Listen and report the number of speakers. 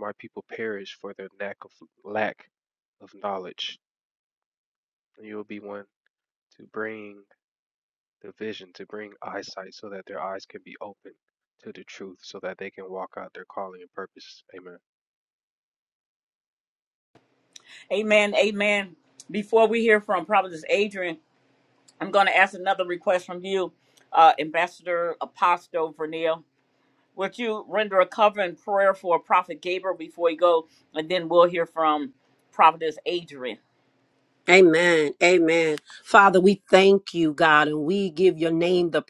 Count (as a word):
three